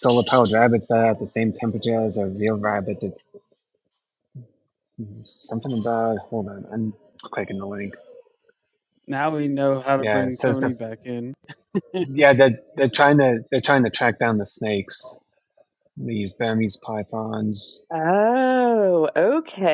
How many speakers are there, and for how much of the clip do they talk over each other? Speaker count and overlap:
3, about 4%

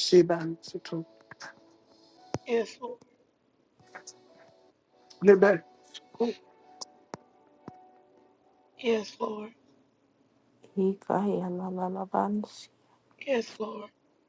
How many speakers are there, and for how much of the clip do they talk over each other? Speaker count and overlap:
3, no overlap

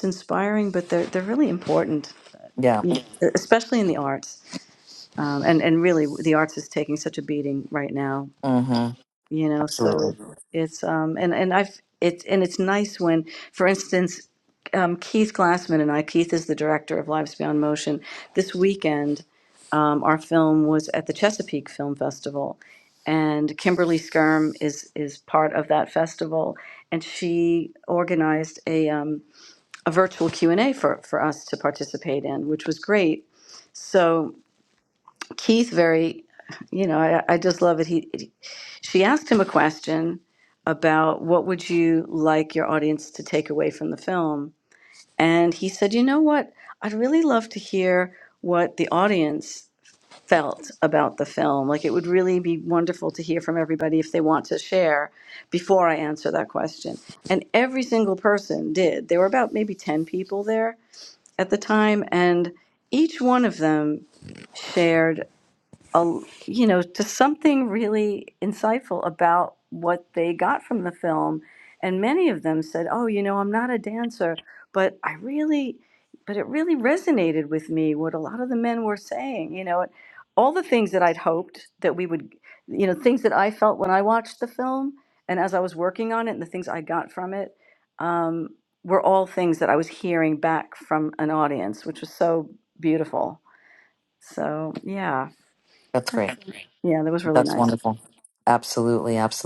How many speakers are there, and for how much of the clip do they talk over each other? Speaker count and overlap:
2, about 1%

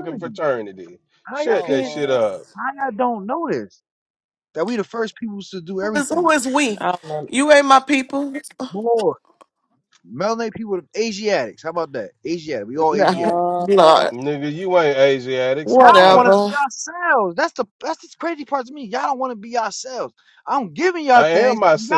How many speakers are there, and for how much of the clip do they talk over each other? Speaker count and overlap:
4, about 19%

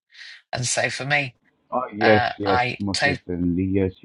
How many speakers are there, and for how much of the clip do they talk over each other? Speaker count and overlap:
2, about 29%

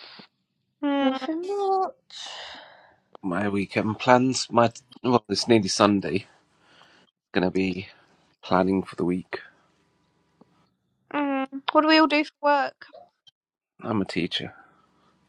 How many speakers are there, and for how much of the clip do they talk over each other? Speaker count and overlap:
3, about 2%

